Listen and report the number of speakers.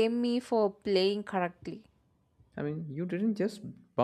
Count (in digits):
2